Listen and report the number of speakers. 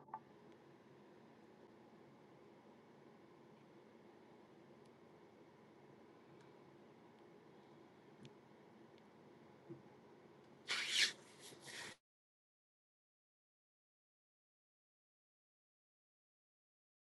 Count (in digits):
0